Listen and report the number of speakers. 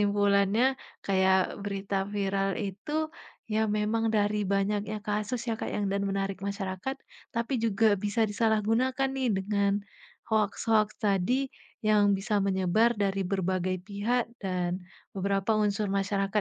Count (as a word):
one